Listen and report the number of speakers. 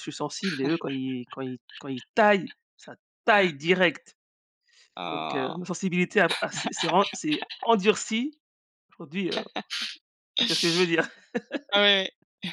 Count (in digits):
2